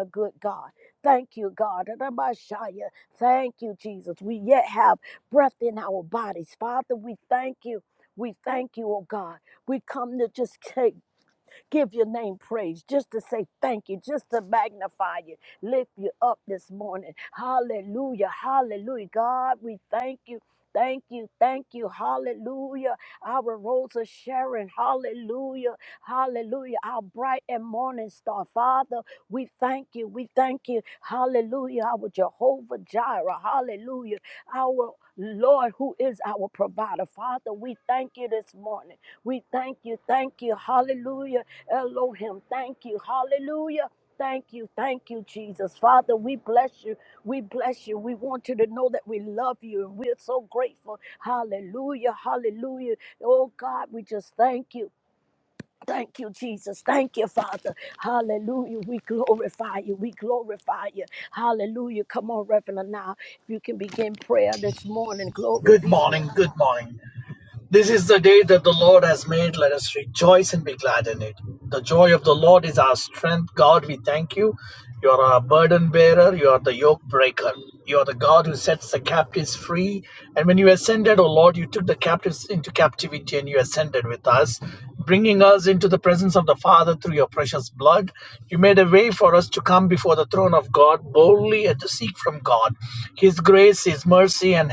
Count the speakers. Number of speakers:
2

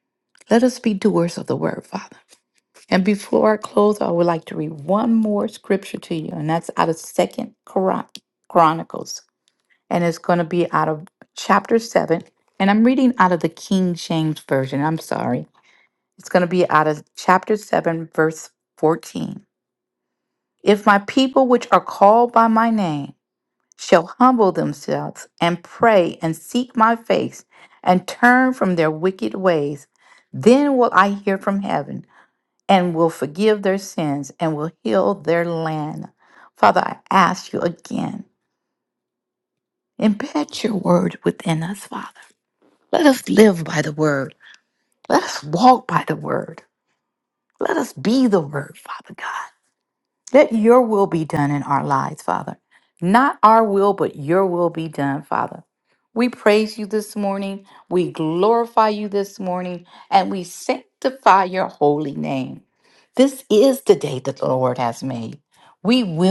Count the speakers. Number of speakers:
1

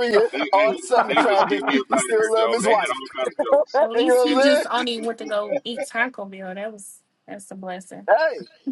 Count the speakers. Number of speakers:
3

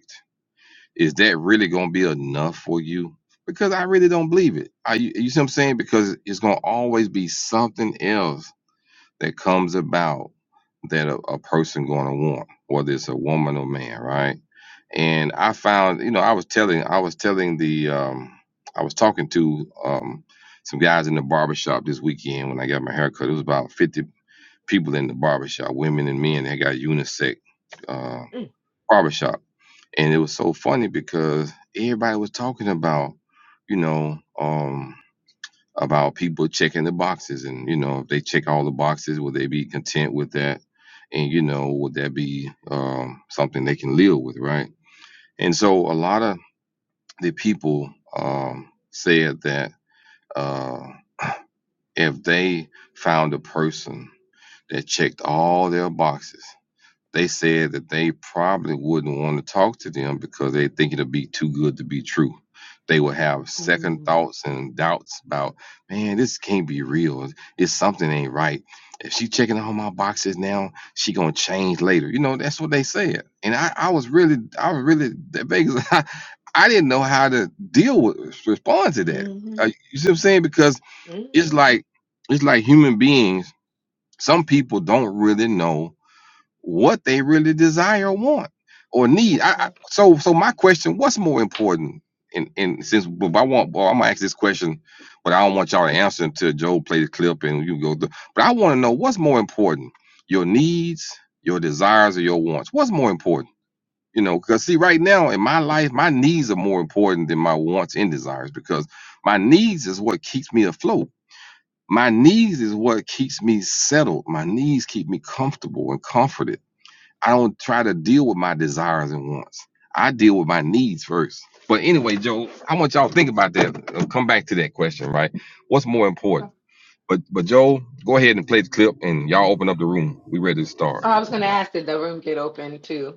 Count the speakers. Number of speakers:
2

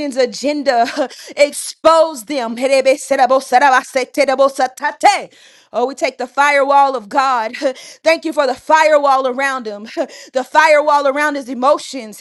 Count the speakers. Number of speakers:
1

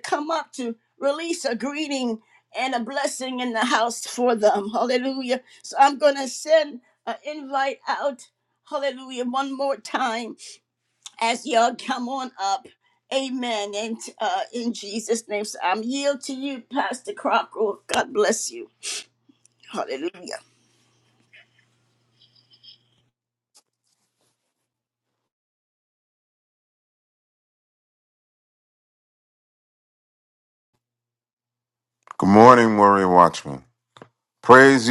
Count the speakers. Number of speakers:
2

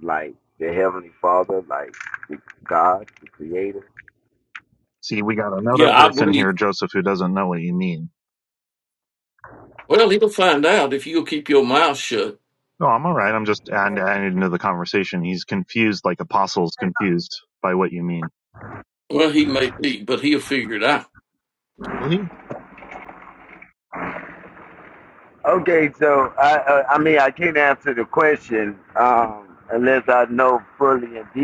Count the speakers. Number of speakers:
3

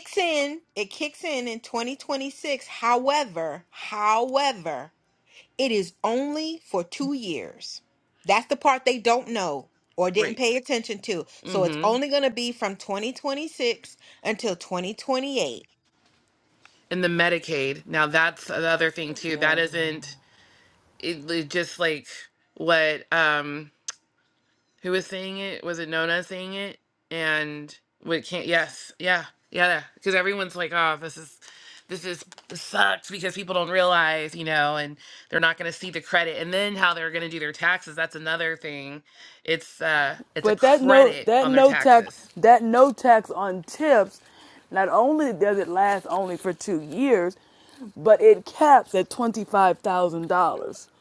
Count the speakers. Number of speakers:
3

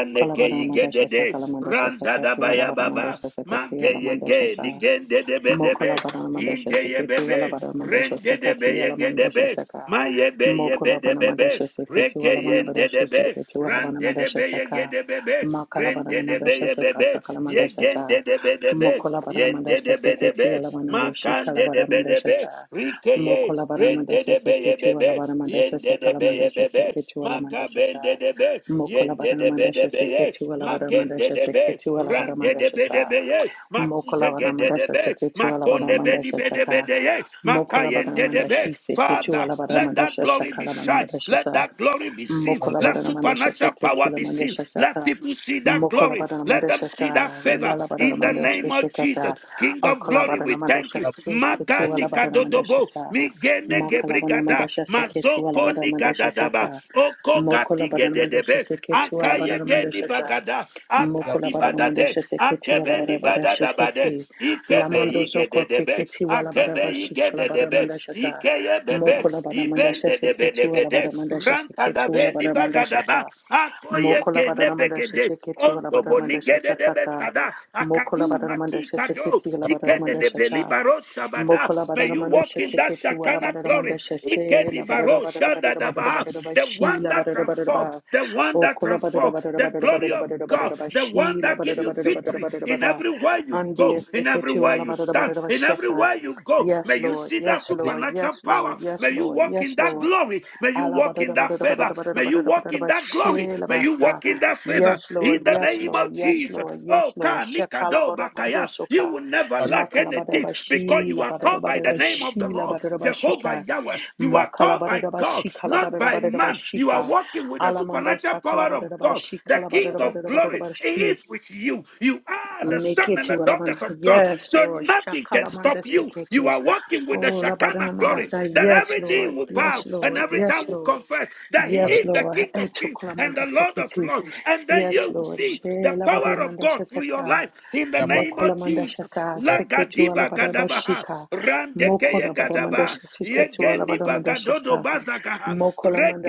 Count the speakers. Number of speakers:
2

